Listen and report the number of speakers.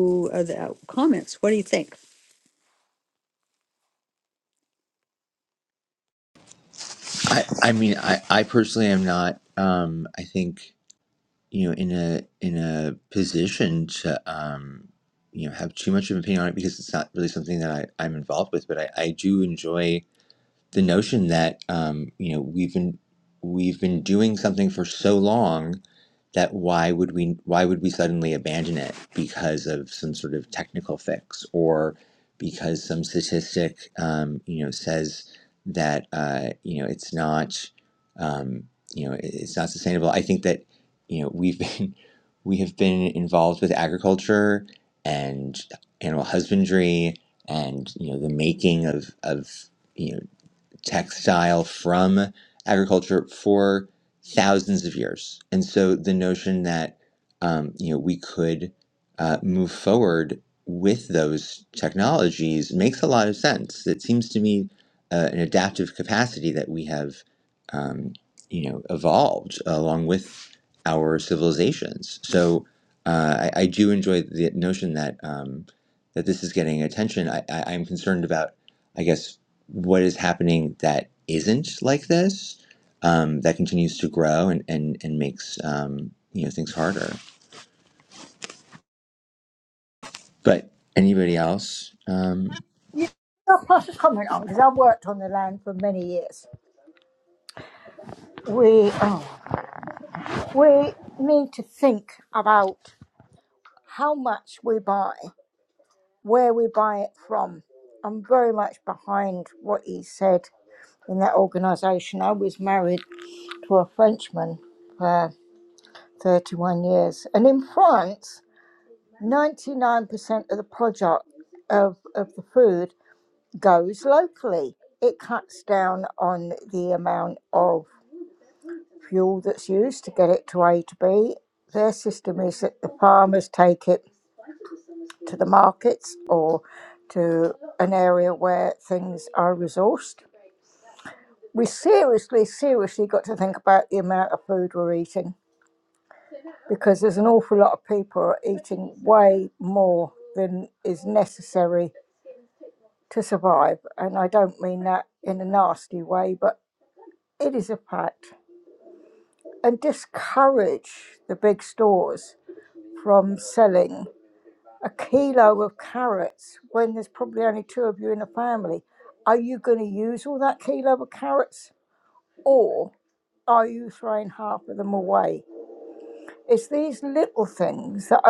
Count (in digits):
3